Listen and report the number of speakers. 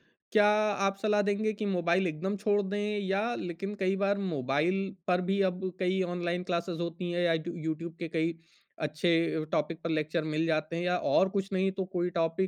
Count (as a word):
one